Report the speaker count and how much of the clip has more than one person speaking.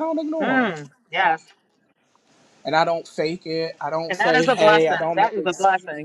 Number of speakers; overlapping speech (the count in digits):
2, about 37%